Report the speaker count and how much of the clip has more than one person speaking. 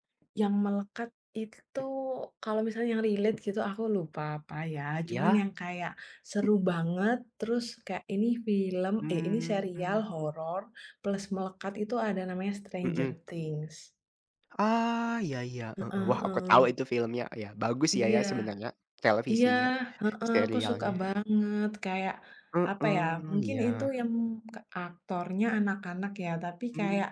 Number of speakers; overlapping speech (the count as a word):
two, about 20%